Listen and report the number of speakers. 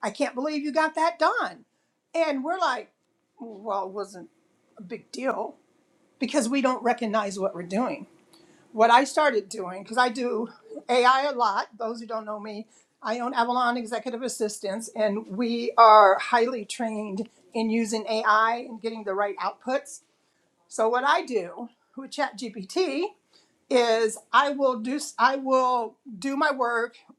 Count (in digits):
1